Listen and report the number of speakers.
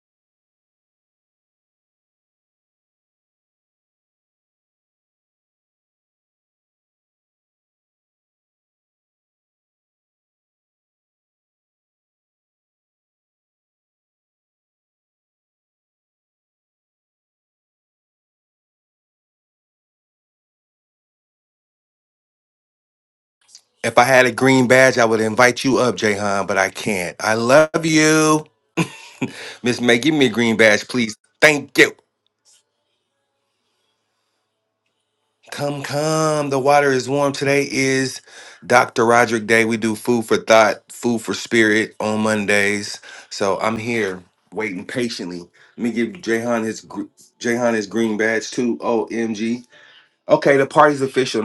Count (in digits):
1